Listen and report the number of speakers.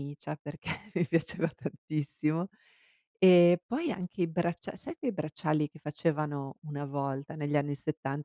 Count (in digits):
1